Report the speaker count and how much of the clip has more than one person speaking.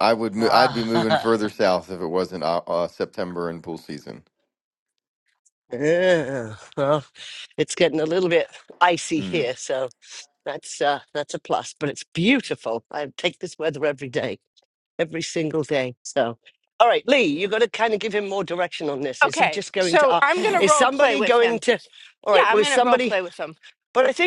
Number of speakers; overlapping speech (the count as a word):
three, about 18%